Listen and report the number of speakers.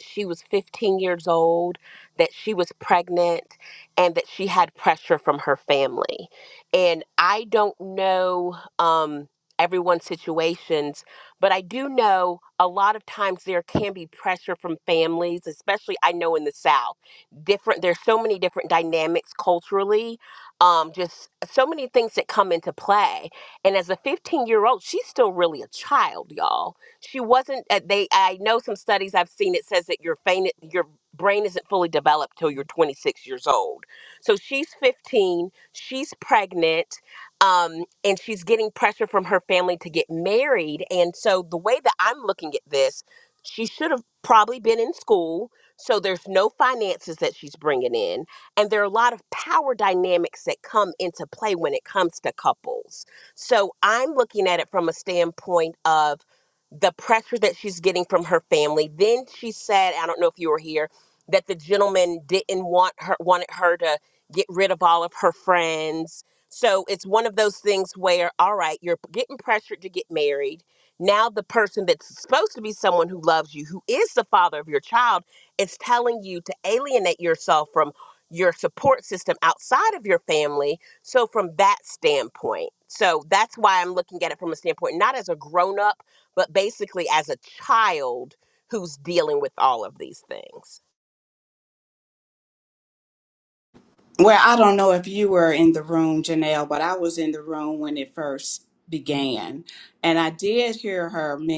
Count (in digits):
2